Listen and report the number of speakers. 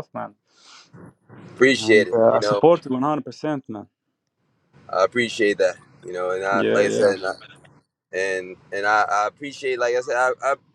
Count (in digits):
2